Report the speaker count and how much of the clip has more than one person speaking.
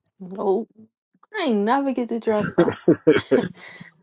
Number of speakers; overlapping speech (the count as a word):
one, no overlap